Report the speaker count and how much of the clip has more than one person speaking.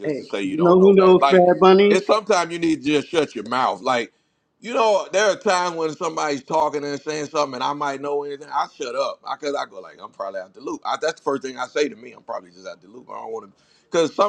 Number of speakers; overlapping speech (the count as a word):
two, about 11%